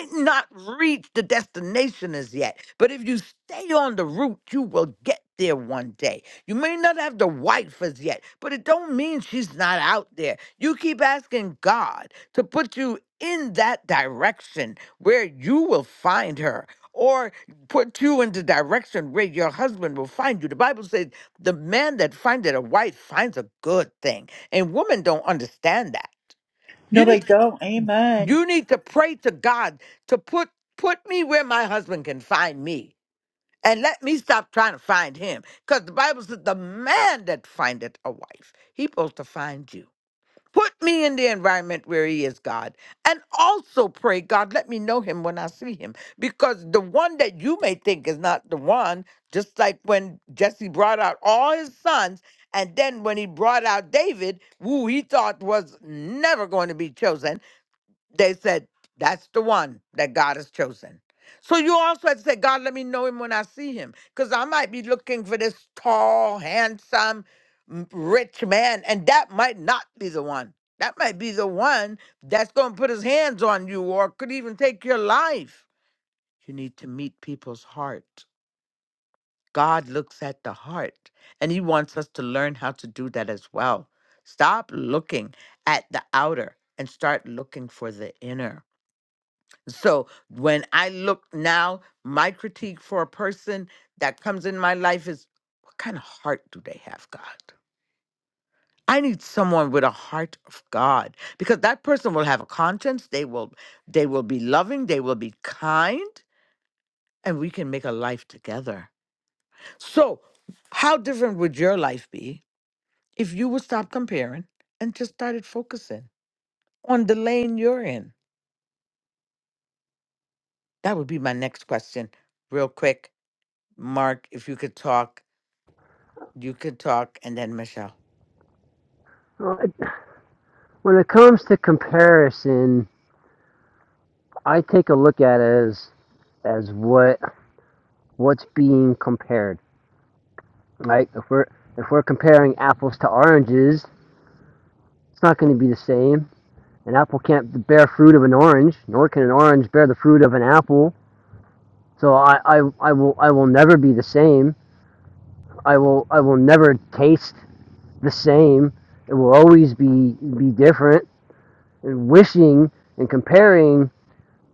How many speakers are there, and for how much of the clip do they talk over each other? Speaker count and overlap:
three, under 1%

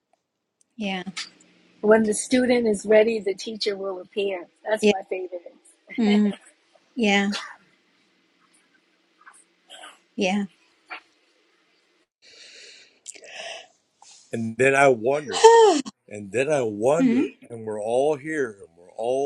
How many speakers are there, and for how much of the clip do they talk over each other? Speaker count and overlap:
three, about 2%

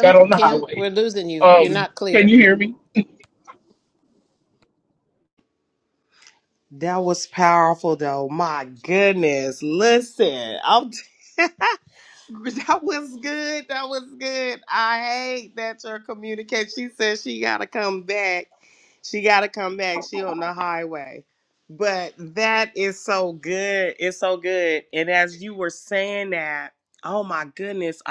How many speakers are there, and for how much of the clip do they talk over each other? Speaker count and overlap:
three, about 6%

